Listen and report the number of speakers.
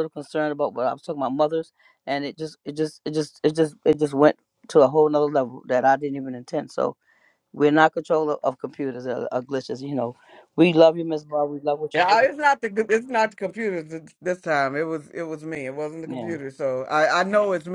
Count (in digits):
2